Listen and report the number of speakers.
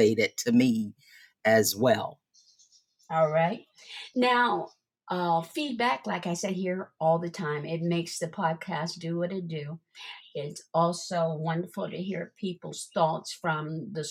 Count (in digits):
2